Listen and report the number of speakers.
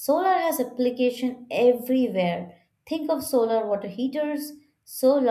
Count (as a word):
one